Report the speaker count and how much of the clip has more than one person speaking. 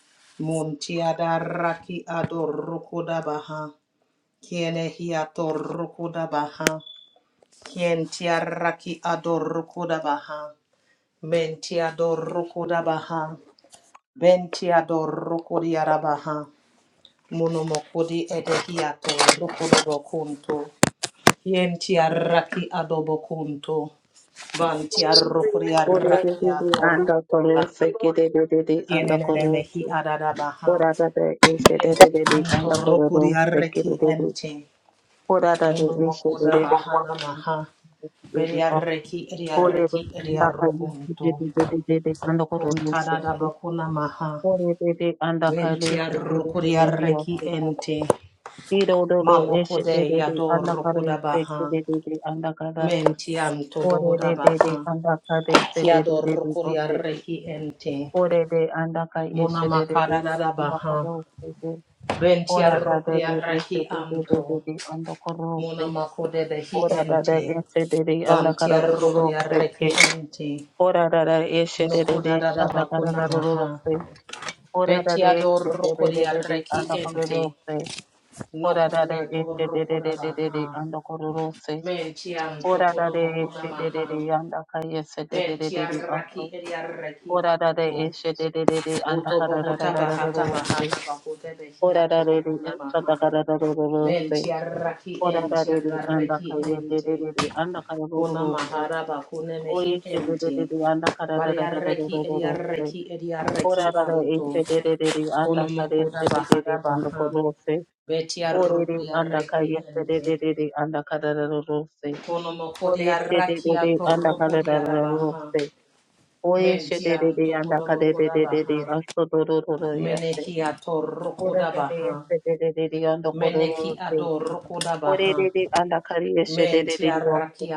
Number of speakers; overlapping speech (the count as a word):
two, about 41%